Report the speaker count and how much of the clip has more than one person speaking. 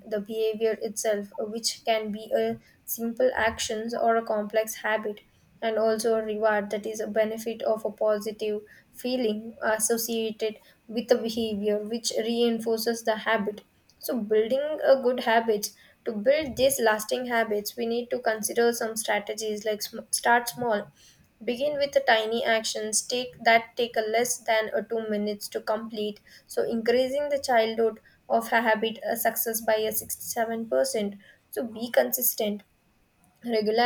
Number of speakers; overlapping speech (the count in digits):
1, no overlap